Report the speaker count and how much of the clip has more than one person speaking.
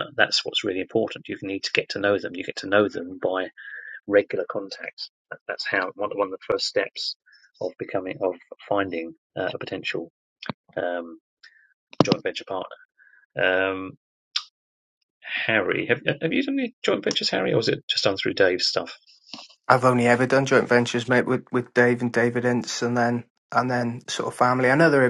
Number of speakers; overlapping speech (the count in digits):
2, no overlap